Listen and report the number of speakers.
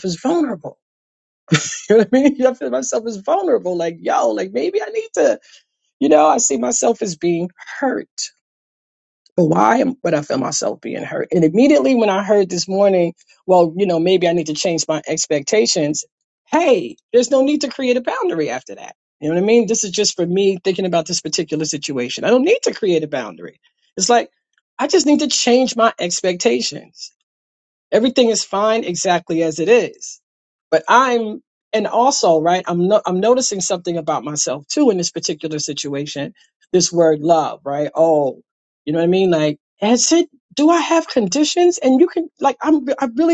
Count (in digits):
1